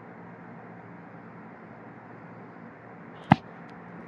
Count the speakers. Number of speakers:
0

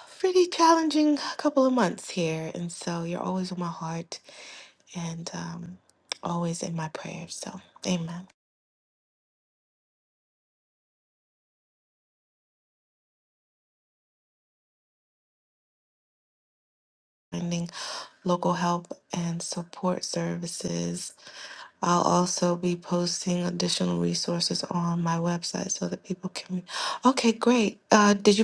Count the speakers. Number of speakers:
1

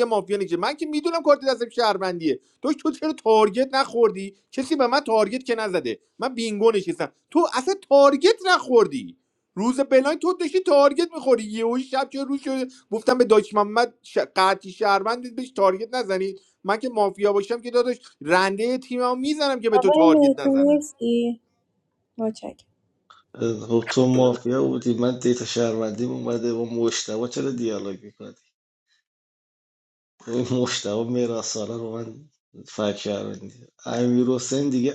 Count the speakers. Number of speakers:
3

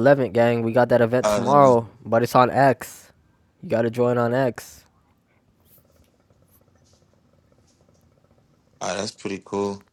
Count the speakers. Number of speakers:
2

